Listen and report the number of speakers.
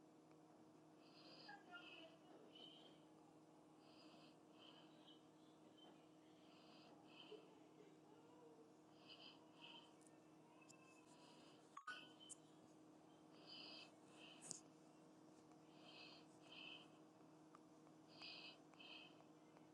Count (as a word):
zero